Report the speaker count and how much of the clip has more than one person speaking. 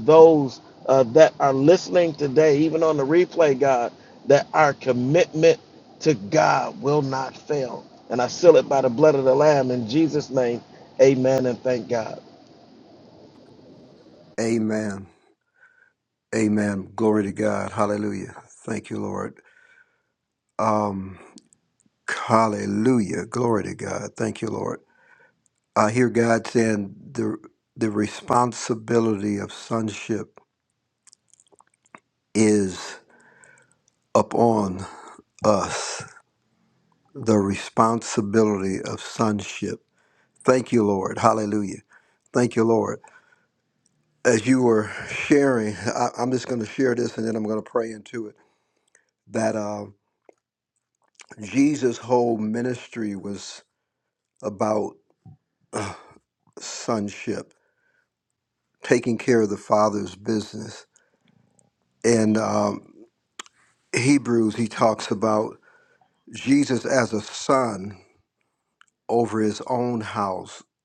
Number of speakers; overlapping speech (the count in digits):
2, no overlap